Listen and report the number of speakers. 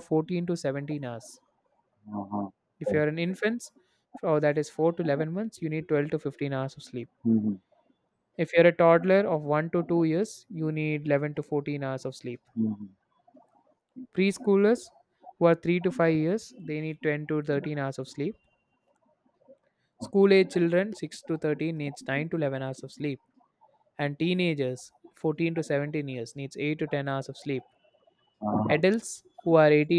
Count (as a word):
two